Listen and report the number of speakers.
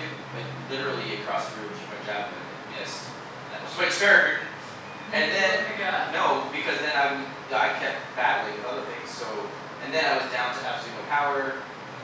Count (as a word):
two